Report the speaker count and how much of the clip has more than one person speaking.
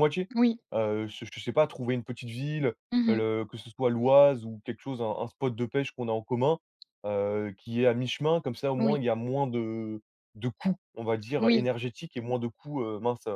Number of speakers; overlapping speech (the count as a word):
two, about 5%